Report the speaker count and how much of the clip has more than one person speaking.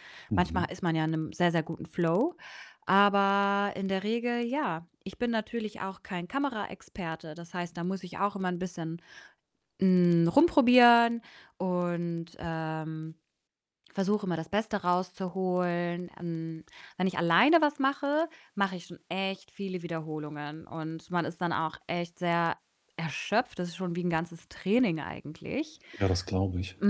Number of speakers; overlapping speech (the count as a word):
two, about 1%